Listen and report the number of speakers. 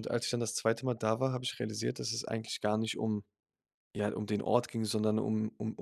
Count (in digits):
1